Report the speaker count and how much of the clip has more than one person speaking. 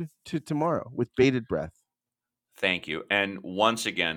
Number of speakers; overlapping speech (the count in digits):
2, no overlap